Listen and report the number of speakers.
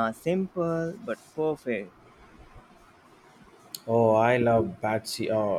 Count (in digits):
2